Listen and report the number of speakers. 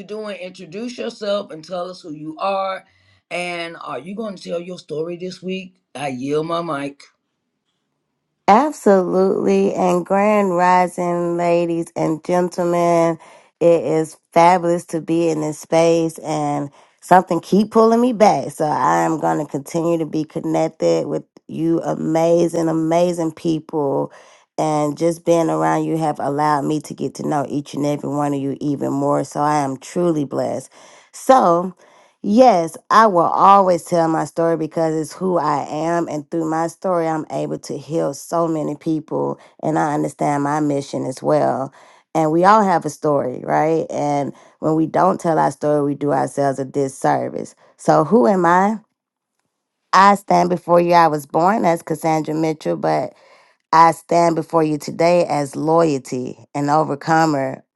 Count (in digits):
2